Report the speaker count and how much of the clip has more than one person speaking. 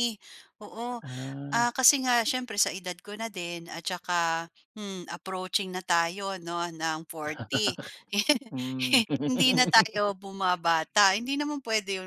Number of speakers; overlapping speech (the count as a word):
two, about 1%